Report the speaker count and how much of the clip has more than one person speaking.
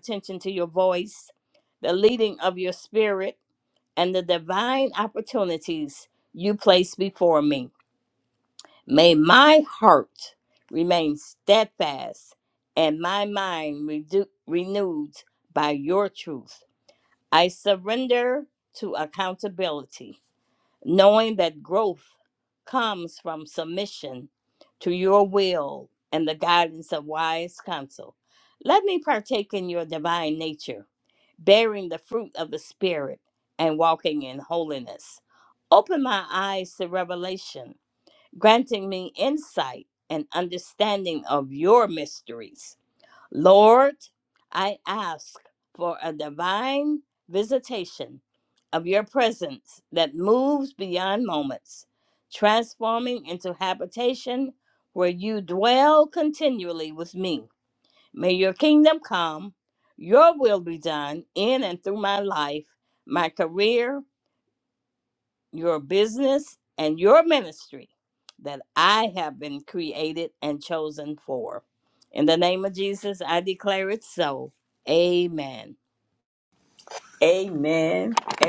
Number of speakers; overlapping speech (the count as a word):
two, no overlap